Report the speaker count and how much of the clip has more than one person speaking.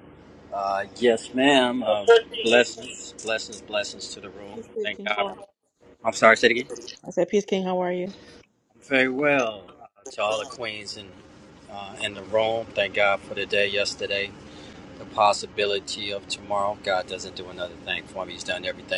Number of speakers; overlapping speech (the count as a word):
two, about 4%